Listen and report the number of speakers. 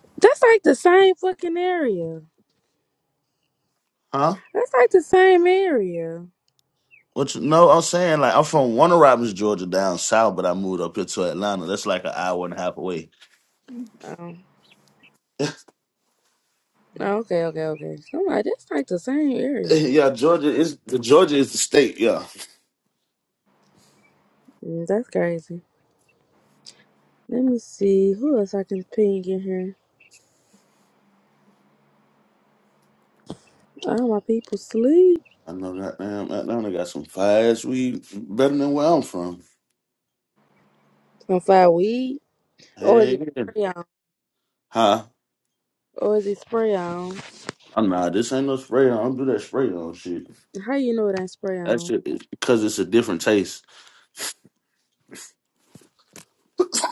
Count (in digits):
2